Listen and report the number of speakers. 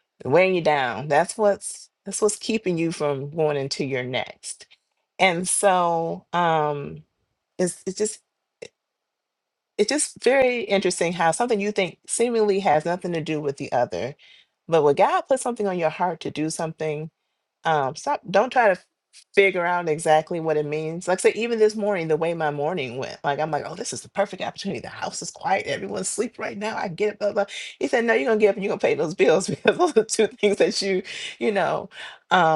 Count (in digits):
1